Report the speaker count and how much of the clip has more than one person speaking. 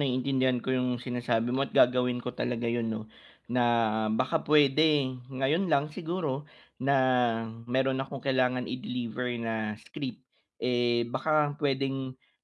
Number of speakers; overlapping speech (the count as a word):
one, no overlap